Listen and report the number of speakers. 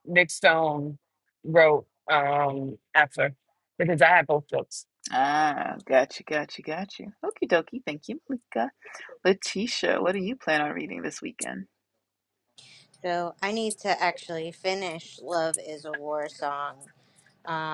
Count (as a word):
three